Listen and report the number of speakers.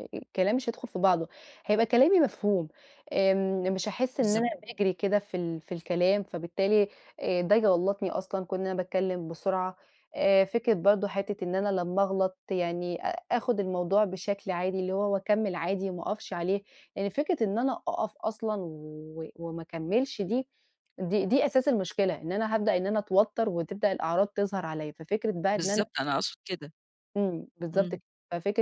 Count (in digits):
2